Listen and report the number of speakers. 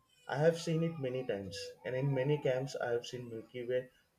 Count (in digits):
1